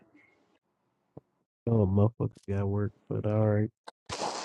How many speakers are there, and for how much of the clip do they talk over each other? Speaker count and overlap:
1, no overlap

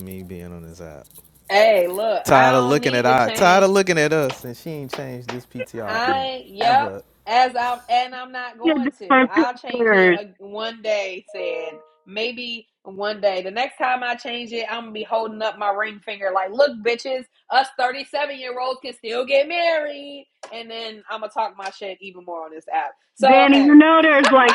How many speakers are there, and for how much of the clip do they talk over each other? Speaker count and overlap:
3, about 19%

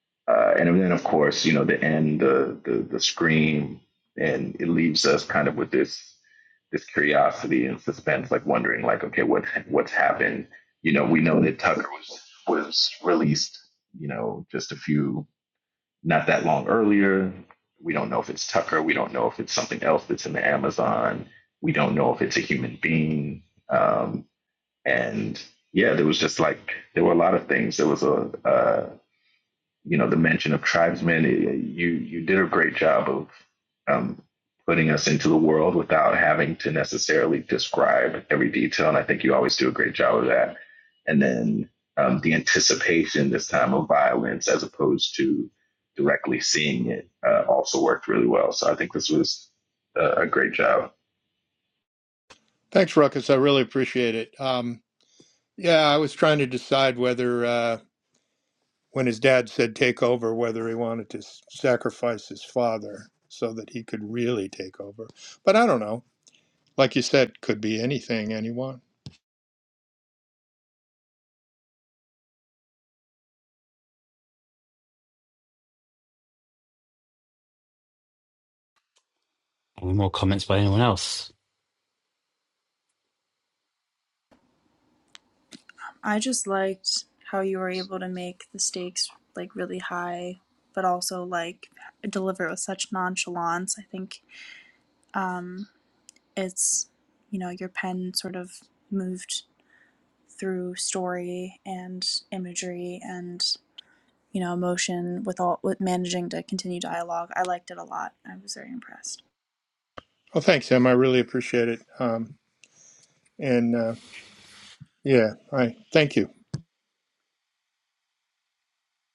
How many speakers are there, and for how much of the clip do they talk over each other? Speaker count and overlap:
4, no overlap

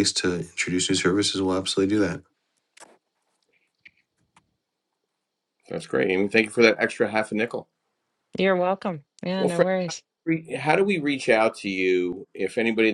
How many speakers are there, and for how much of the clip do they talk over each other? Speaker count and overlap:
3, about 2%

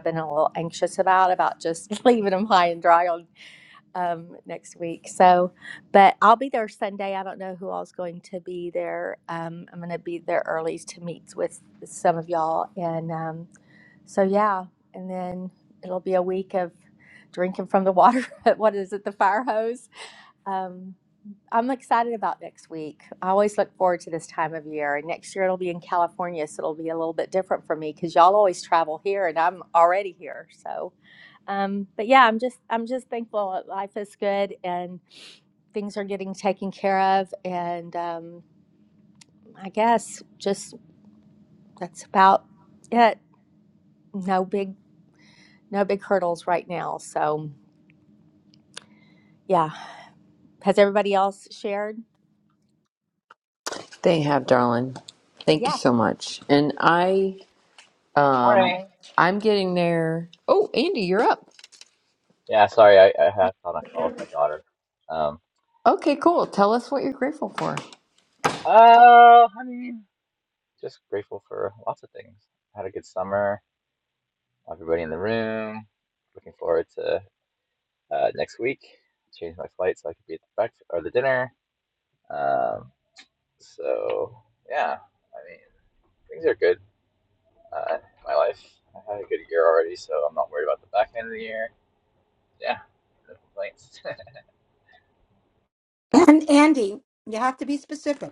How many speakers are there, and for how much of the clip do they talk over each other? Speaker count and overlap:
4, about 1%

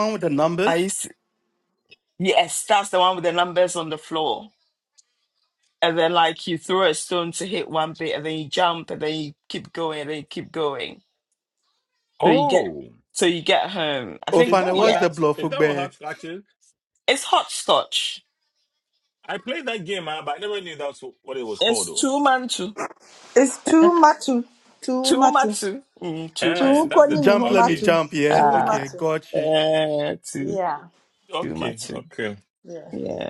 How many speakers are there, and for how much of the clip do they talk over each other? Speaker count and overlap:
4, about 19%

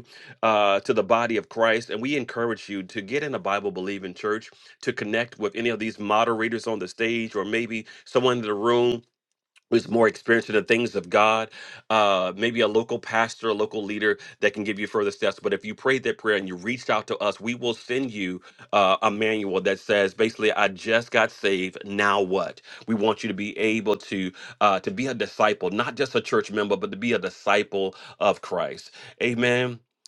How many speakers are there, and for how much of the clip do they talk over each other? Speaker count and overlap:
1, no overlap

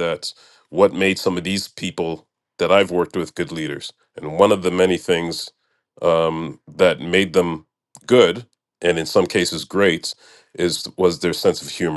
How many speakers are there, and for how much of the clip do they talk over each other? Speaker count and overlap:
1, no overlap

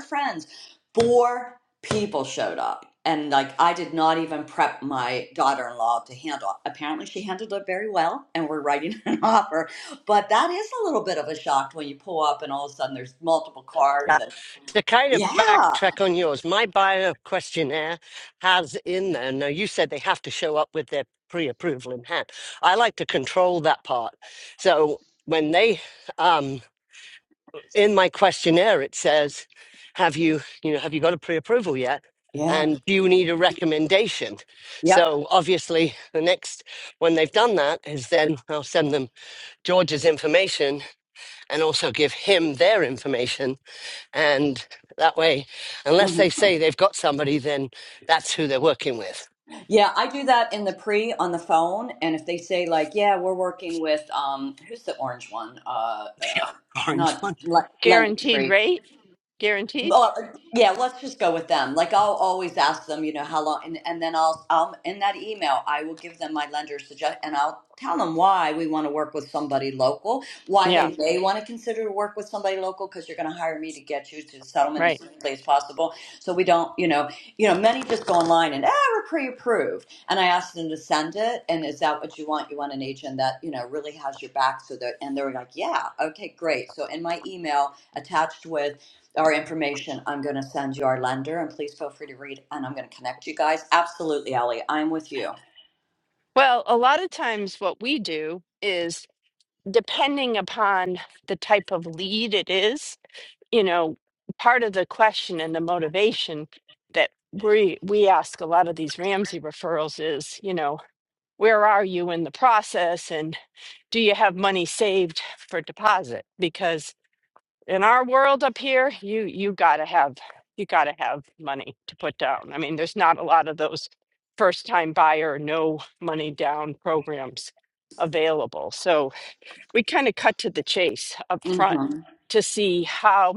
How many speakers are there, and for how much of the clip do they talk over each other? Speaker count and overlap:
3, about 3%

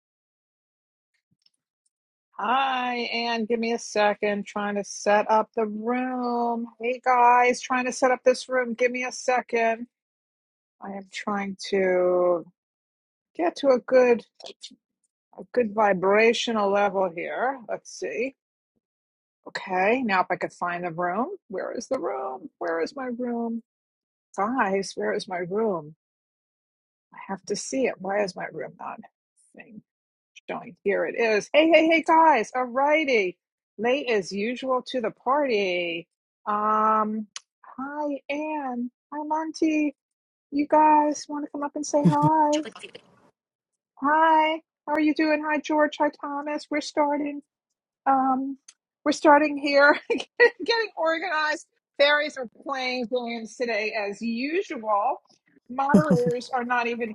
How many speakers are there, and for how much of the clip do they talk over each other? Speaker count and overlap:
1, no overlap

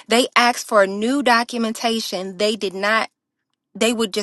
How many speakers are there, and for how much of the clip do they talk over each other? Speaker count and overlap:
1, no overlap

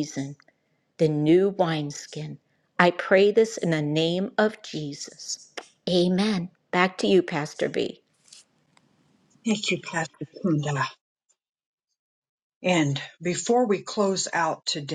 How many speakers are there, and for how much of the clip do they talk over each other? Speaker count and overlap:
2, no overlap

